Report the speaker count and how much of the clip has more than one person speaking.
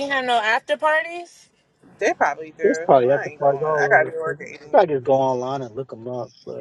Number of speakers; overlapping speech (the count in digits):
3, about 26%